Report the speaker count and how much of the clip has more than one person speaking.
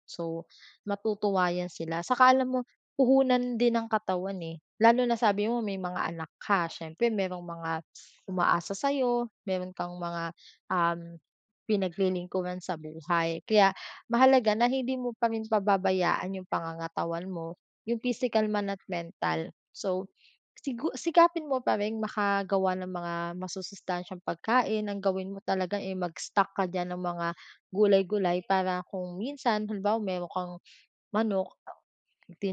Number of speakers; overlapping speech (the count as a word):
one, no overlap